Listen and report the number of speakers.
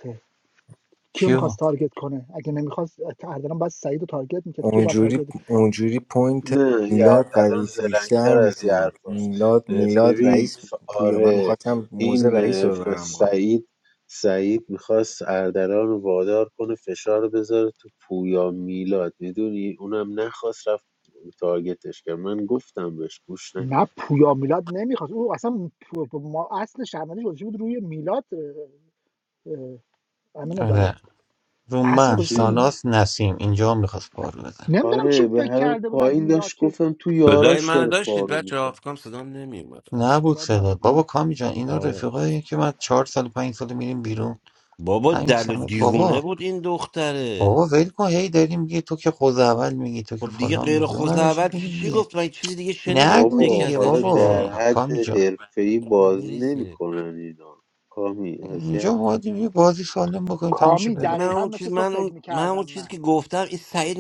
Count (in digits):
5